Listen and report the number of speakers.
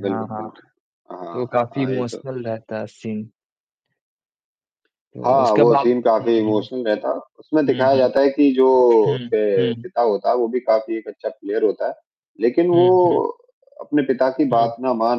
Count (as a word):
two